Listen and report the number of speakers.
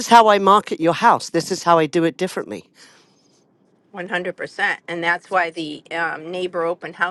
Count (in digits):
2